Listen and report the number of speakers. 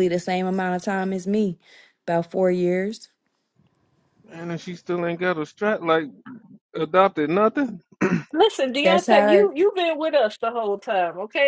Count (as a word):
three